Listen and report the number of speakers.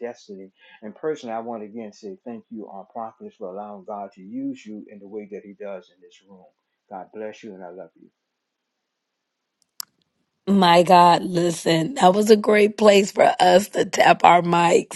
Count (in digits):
2